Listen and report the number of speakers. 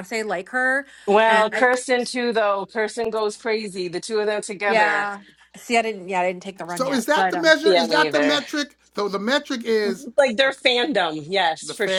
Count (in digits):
3